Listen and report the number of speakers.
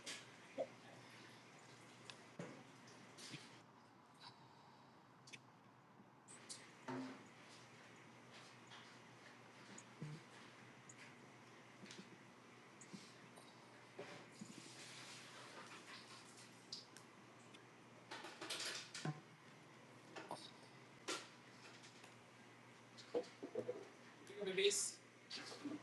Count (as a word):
zero